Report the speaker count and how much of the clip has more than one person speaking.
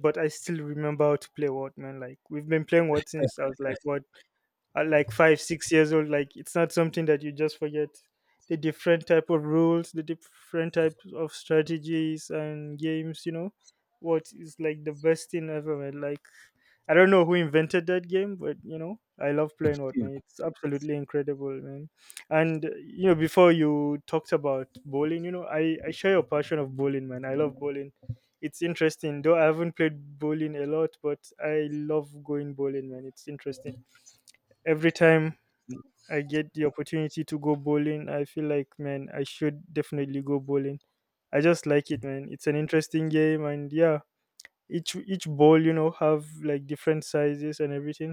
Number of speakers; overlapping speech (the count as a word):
one, no overlap